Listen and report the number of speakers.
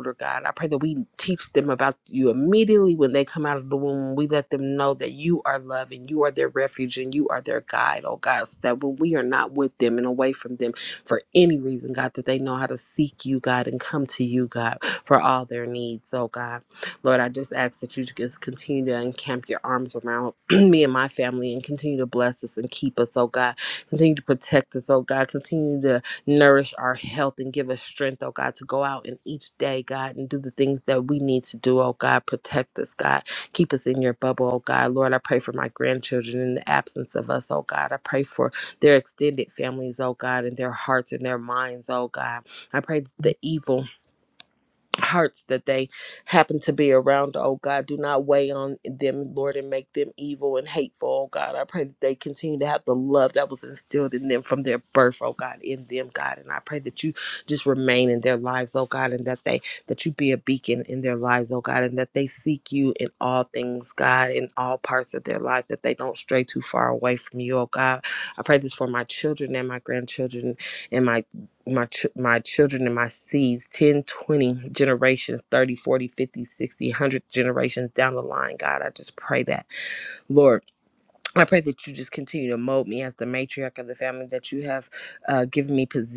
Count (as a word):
one